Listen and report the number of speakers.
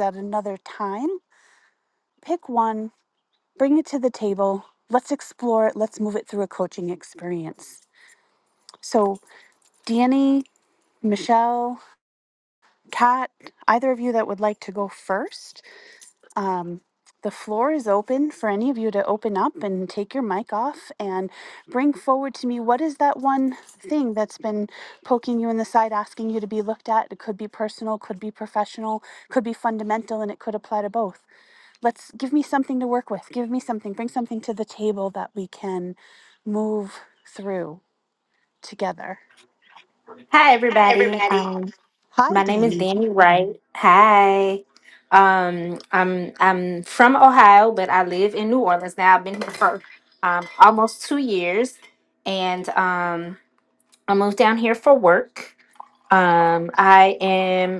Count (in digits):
2